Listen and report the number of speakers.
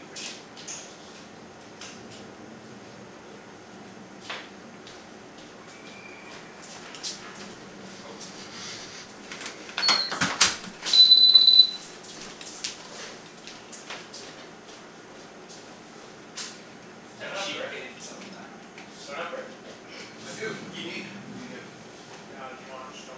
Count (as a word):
three